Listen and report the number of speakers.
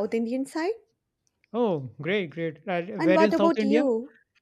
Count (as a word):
two